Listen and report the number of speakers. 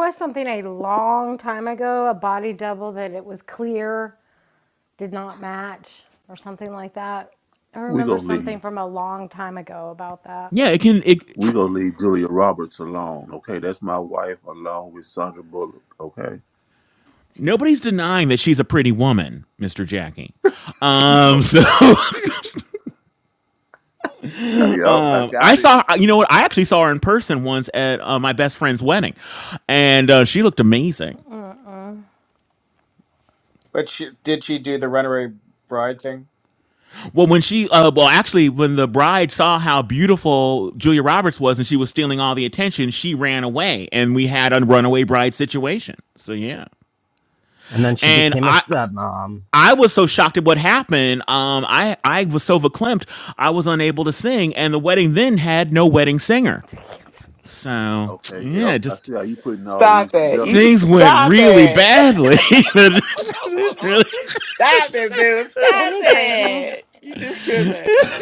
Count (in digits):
6